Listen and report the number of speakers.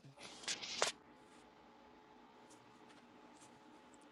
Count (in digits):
0